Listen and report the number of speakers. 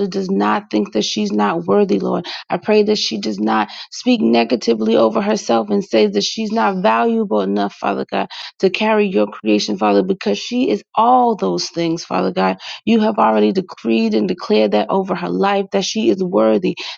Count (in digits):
1